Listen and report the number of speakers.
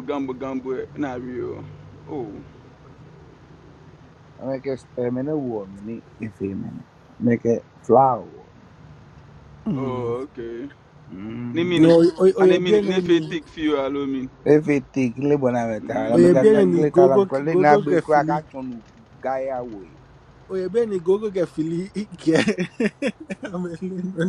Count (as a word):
three